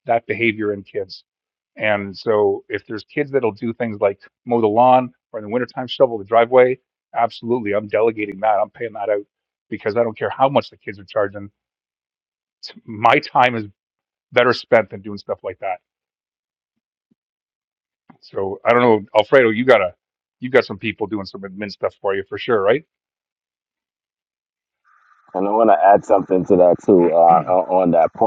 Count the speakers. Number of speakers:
two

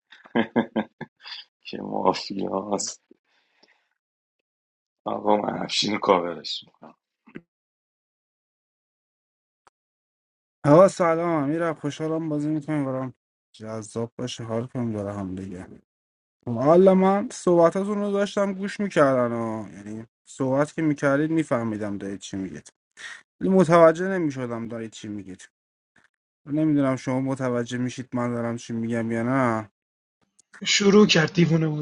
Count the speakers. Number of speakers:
three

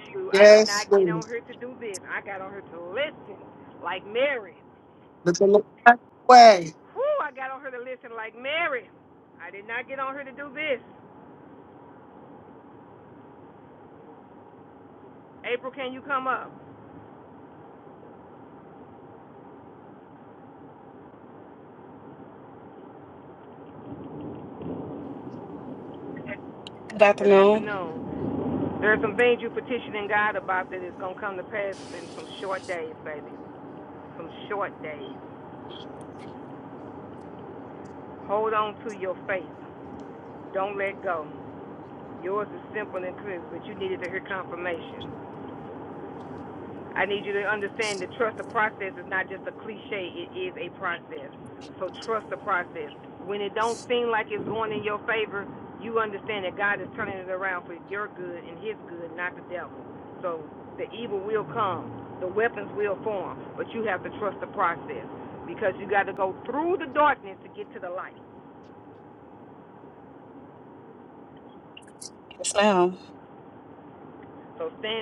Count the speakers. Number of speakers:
three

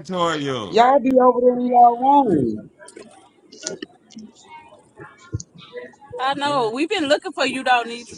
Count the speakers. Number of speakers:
three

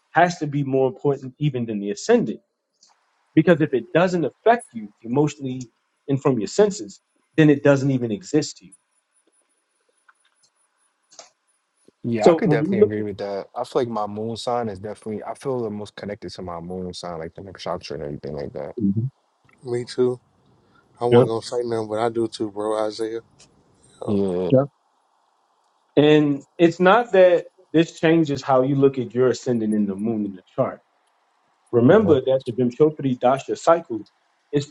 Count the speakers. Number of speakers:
three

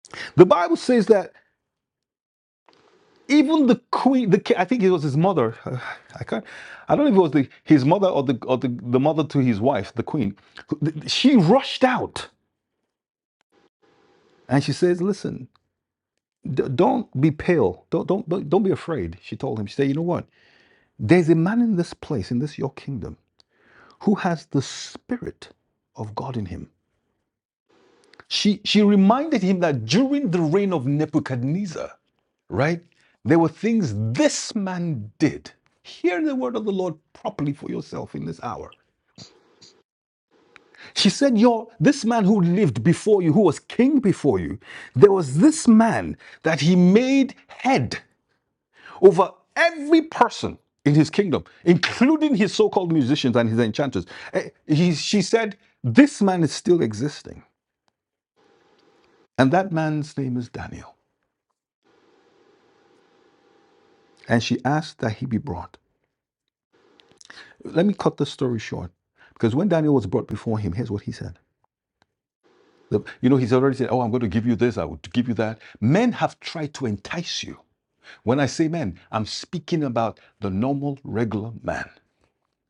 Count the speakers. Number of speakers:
one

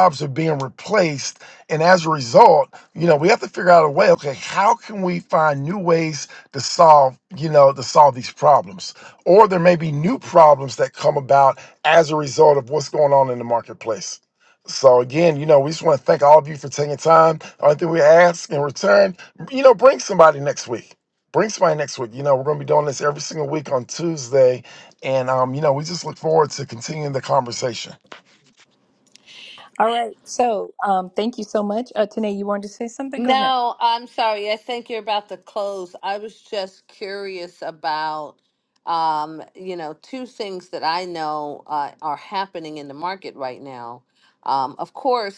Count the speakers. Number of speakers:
three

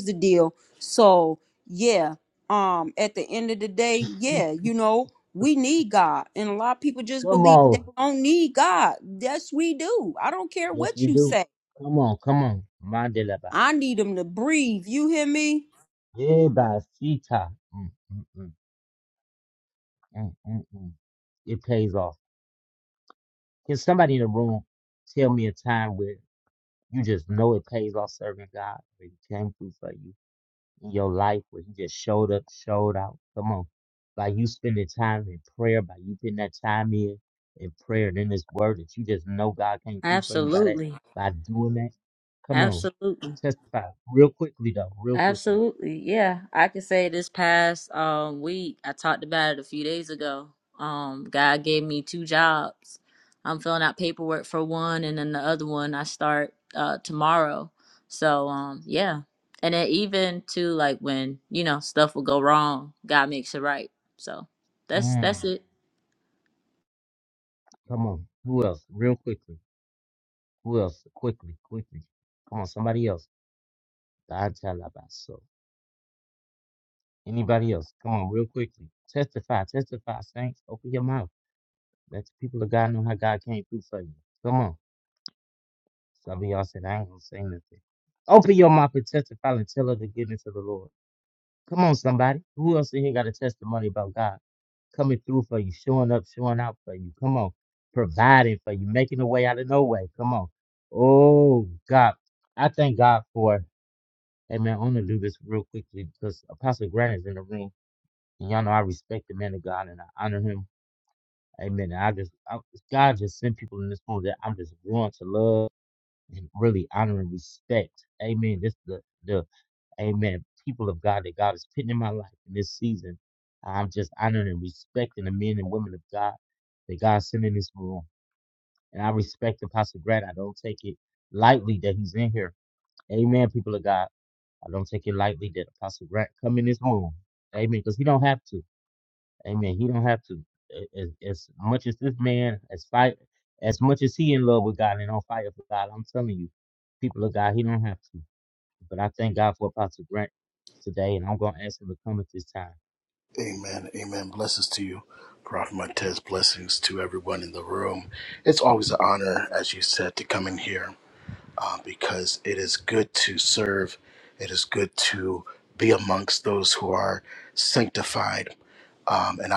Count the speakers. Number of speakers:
four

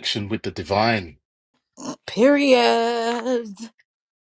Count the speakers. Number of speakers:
two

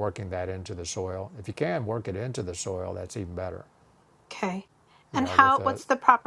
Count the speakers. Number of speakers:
two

